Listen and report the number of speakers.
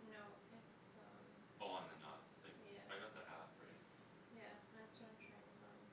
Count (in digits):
2